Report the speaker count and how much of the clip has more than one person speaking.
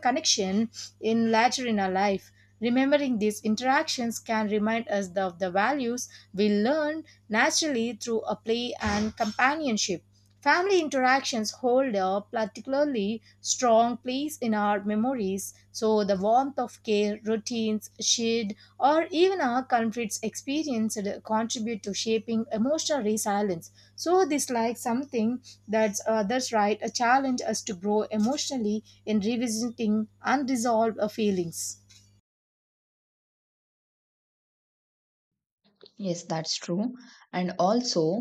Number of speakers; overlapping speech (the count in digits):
2, no overlap